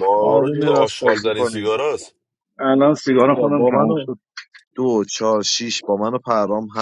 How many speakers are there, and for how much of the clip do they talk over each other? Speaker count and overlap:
3, about 33%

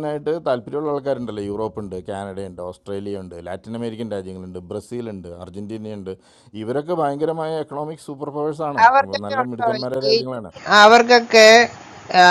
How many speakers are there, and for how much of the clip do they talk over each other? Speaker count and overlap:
2, about 6%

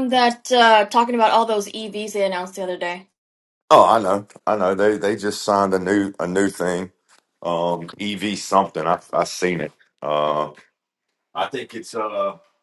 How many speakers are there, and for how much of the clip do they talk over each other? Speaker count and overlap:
2, no overlap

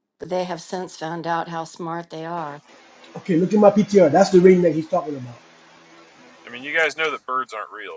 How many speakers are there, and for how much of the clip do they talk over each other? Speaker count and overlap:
3, no overlap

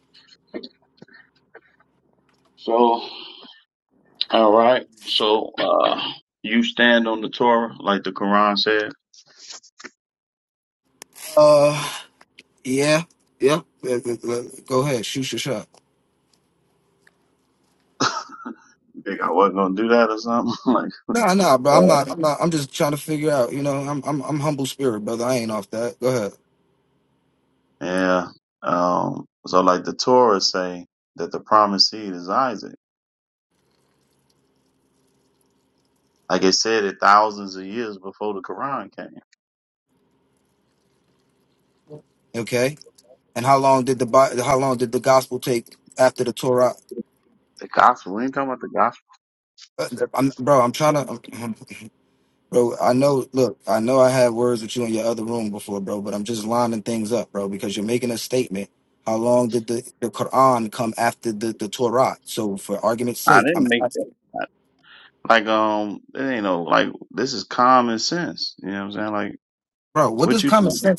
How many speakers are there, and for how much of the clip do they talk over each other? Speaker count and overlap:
2, about 2%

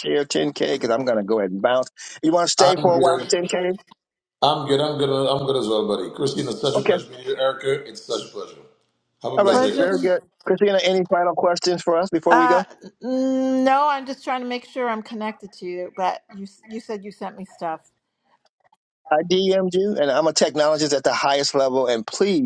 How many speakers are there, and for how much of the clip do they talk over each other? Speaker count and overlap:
3, about 9%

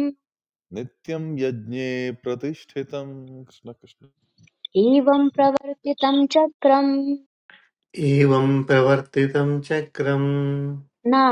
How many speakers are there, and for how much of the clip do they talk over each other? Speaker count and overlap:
3, no overlap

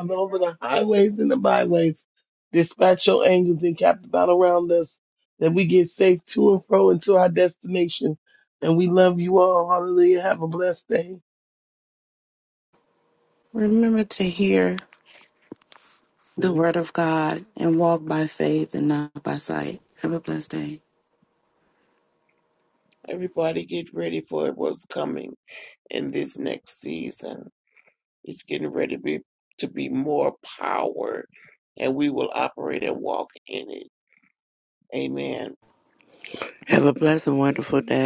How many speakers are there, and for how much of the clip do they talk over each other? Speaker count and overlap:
4, no overlap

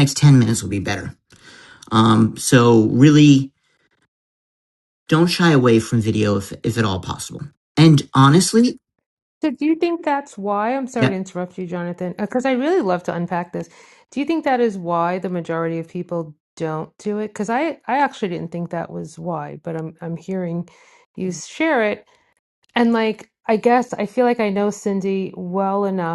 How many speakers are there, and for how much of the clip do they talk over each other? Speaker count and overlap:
2, about 1%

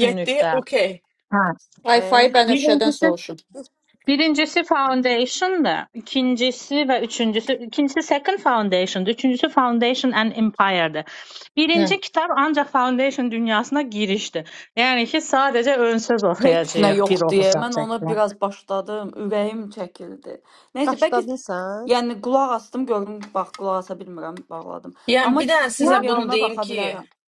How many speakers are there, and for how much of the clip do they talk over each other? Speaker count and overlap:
5, about 22%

